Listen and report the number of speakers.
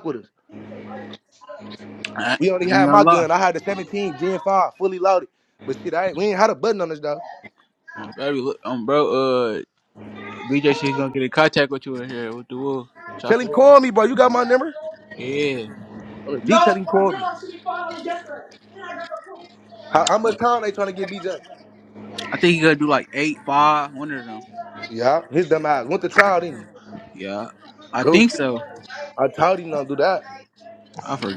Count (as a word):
two